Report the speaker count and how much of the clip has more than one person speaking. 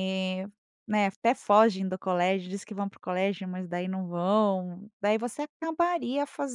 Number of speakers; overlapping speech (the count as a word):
one, no overlap